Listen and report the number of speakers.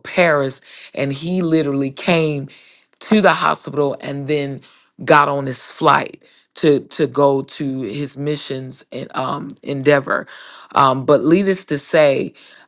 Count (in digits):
1